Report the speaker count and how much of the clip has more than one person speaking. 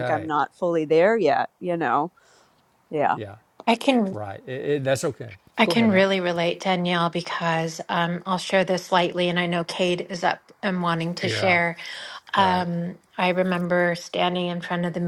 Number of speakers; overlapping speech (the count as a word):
three, about 9%